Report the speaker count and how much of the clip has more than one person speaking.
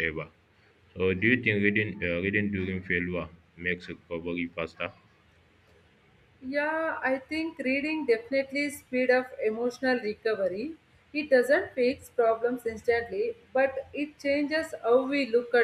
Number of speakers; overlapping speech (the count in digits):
2, no overlap